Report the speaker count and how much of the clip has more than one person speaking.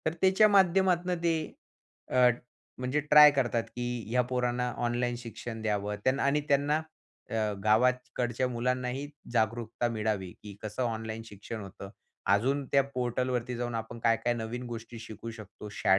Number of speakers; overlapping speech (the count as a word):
one, no overlap